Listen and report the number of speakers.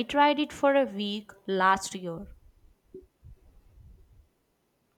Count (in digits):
1